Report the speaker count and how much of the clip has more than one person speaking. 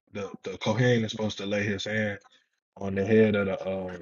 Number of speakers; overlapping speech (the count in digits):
1, no overlap